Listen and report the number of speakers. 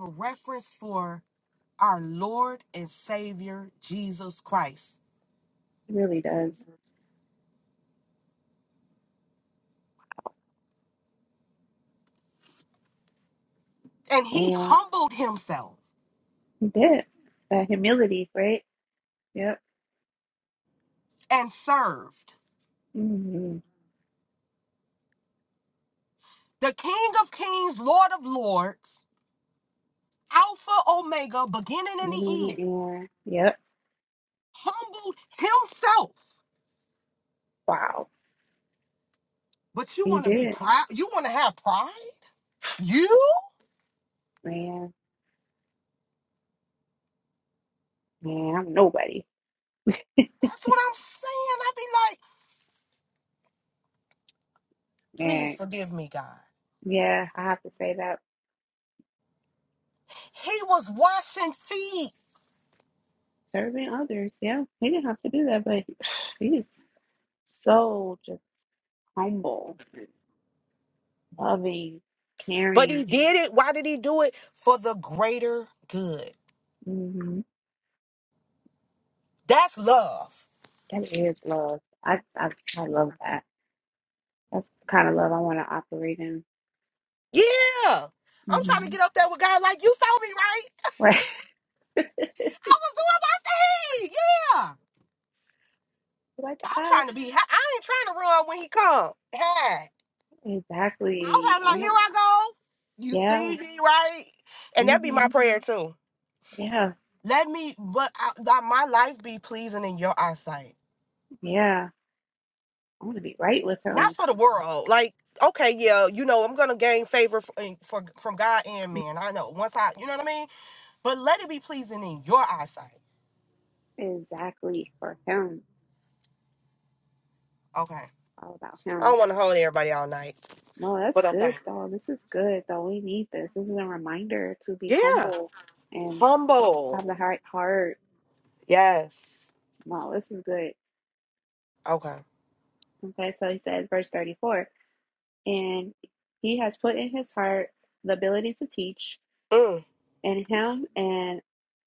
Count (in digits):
2